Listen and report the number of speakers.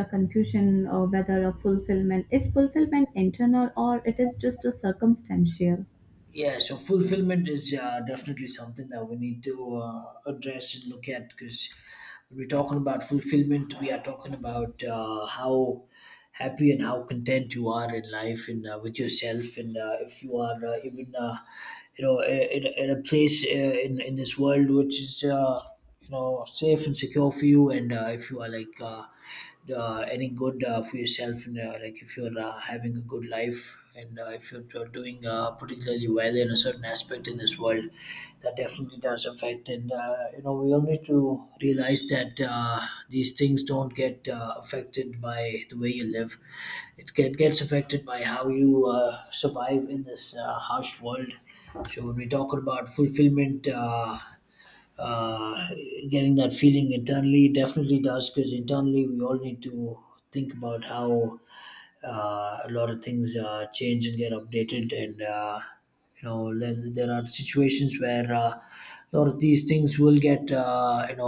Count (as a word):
two